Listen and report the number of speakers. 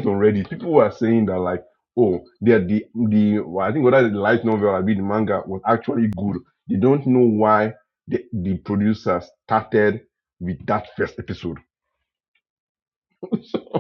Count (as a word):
one